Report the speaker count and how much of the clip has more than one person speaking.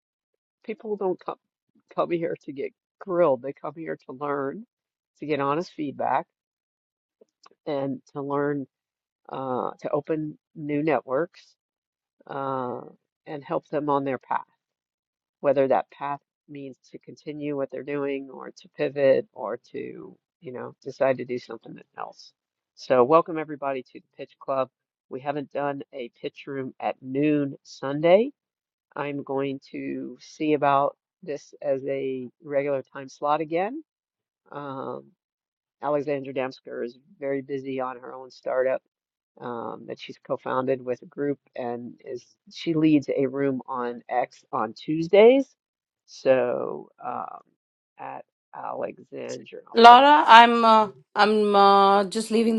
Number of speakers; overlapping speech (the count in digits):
2, about 1%